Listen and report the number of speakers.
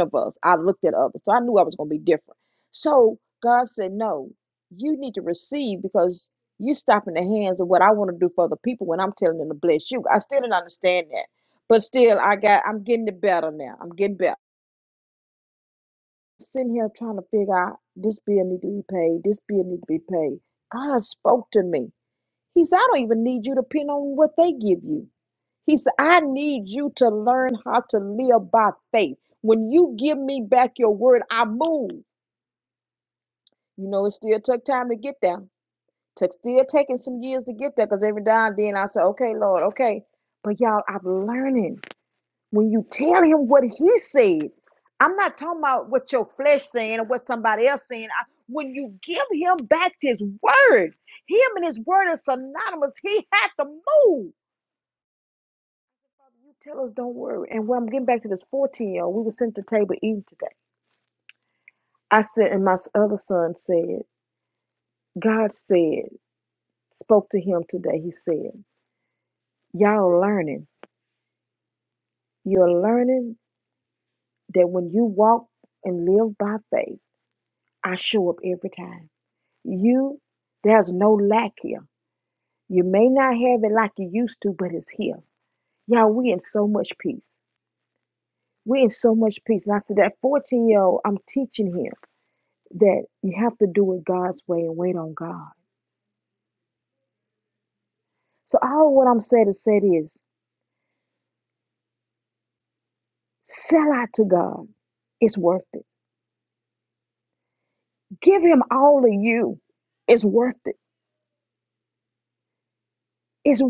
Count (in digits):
1